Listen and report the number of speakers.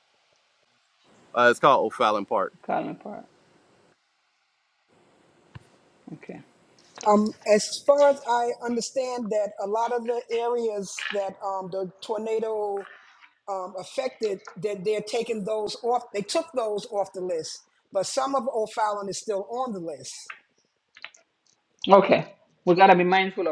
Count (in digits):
3